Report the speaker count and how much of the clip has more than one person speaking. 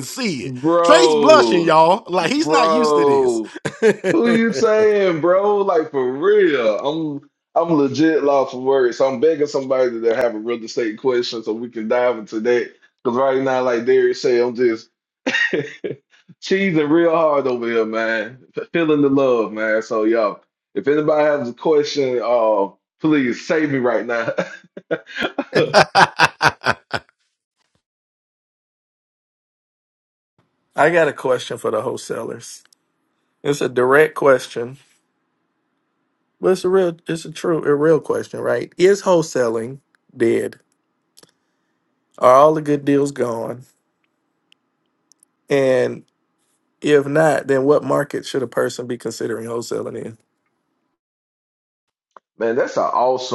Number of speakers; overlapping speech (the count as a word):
three, about 3%